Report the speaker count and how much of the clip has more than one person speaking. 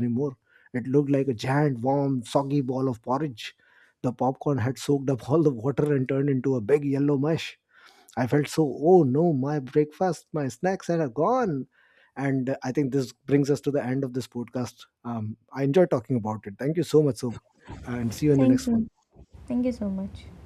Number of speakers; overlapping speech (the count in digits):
2, about 3%